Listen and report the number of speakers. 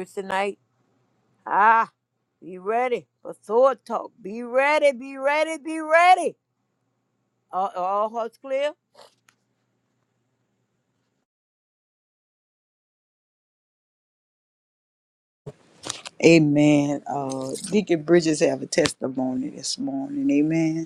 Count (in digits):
2